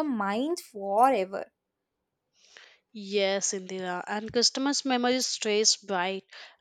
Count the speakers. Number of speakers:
2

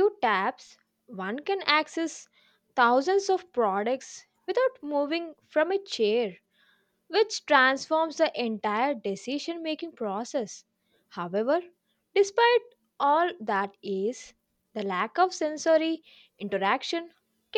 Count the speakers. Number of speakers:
1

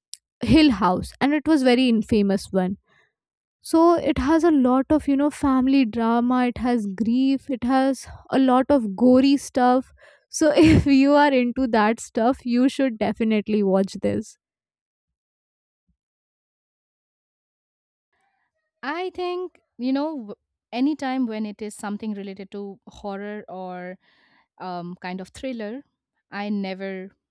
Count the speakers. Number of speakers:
2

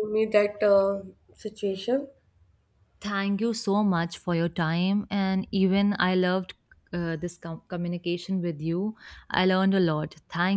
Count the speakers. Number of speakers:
2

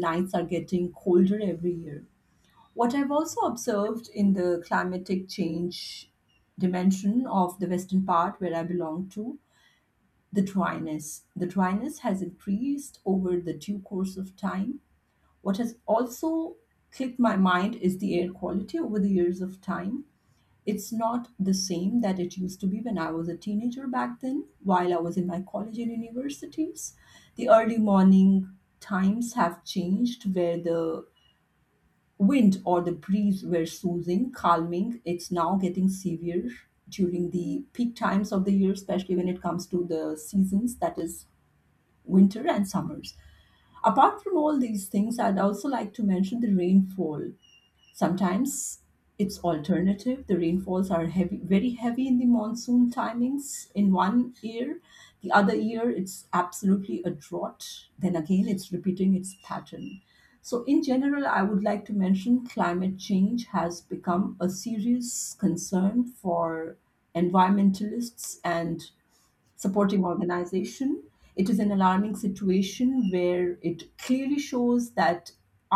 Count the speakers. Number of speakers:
1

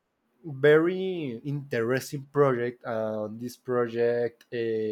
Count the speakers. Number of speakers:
1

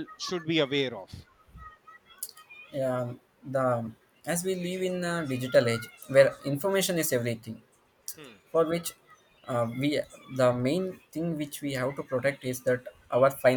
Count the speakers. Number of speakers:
2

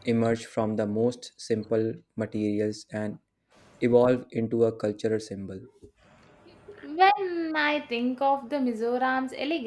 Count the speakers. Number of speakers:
2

